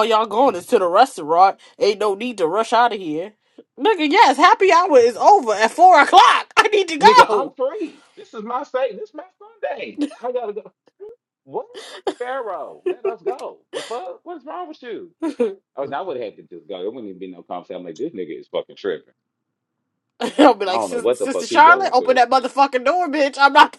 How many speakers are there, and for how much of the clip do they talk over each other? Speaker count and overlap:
two, about 9%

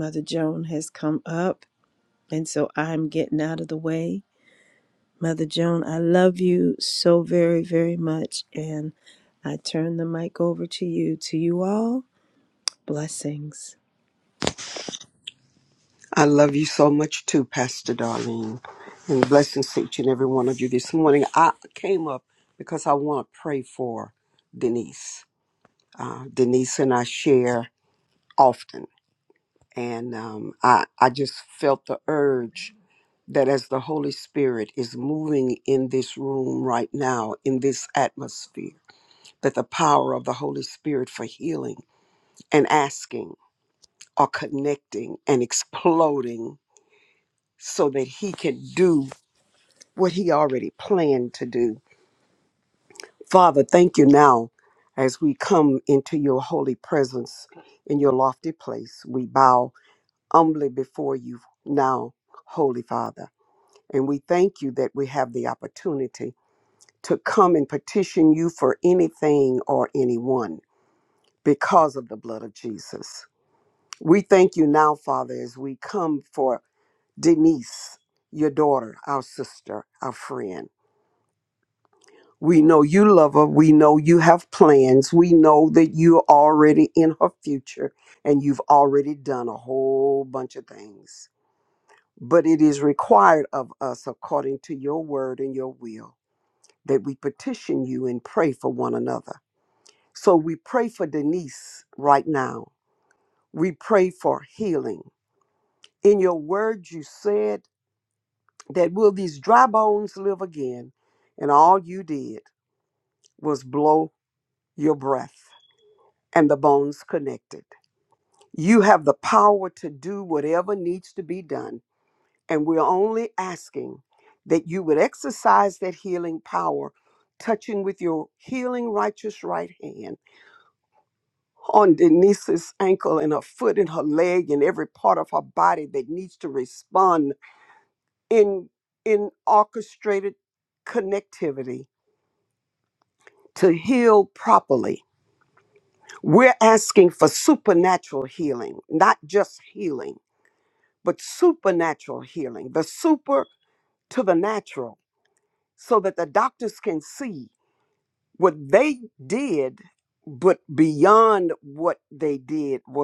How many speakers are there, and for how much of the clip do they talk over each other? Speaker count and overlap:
two, no overlap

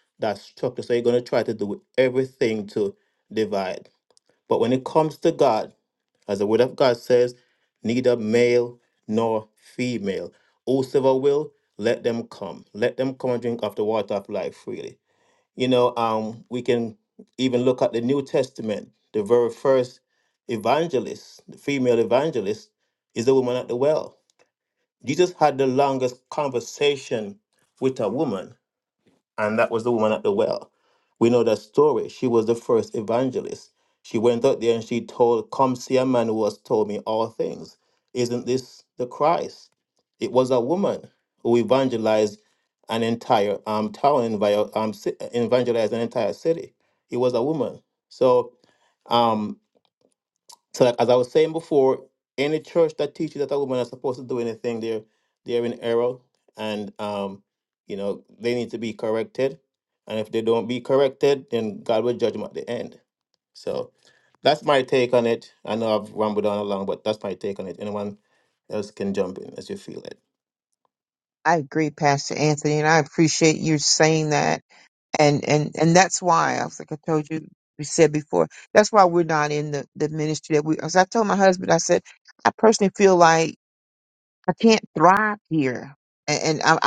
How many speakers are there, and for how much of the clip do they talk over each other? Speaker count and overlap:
two, no overlap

